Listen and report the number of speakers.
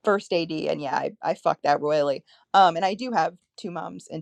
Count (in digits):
1